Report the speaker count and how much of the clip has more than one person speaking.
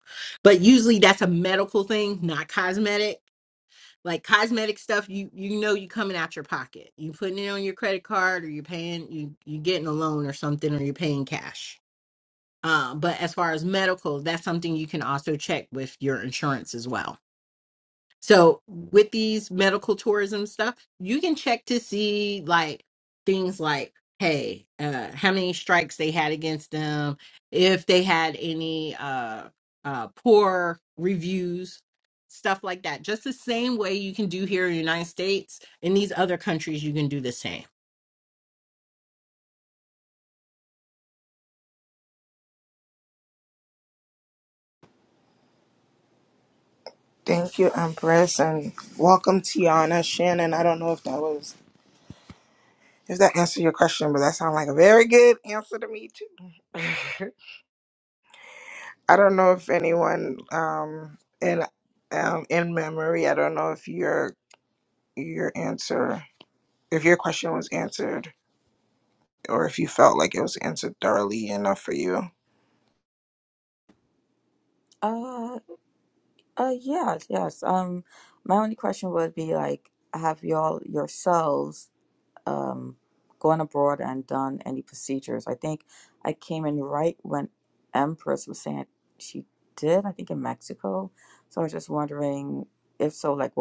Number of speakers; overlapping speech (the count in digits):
3, no overlap